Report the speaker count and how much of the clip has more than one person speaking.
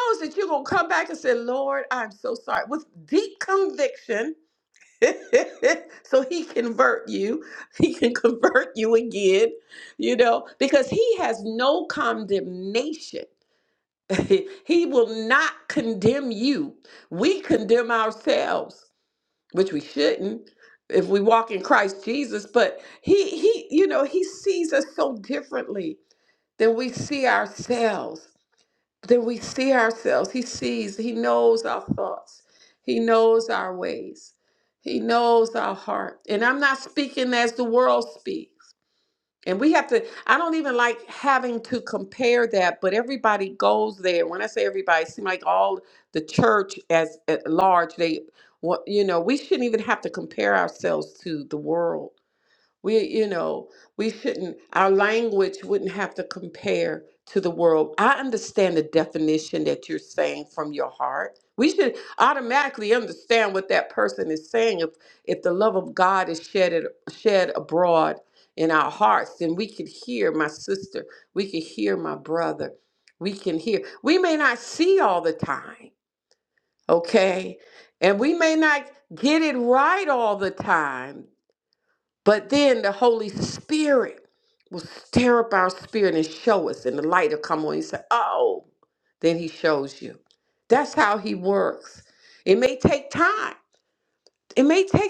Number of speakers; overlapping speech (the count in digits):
1, no overlap